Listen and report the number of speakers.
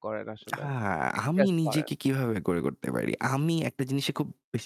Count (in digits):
2